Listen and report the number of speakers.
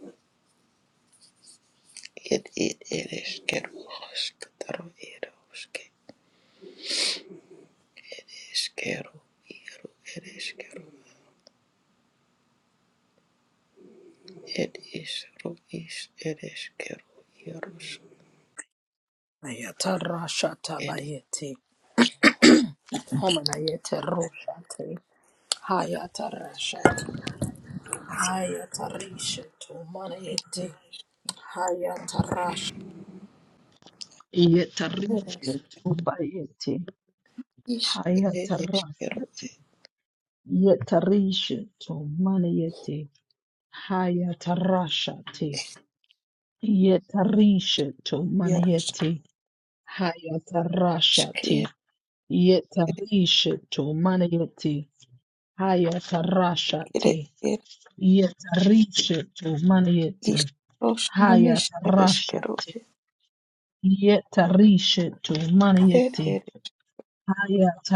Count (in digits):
2